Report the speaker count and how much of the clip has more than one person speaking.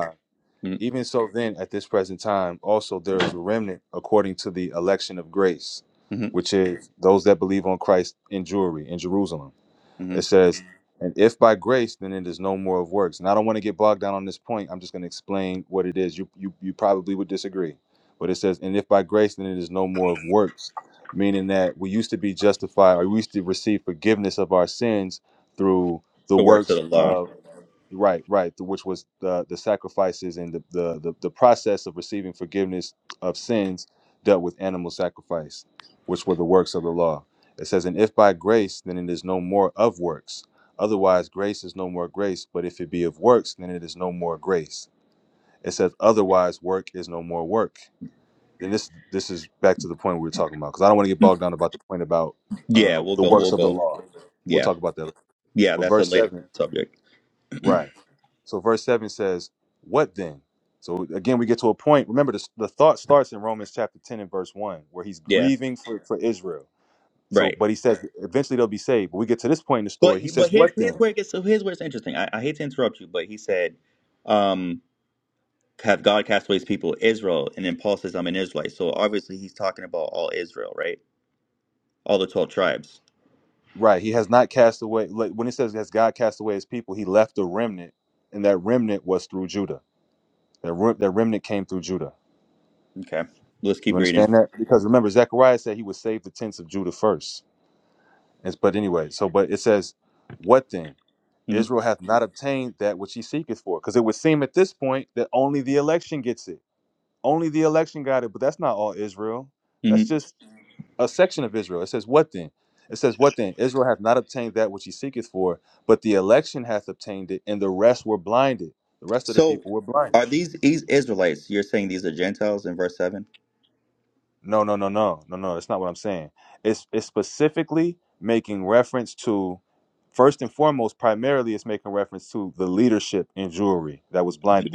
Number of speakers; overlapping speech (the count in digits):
2, about 4%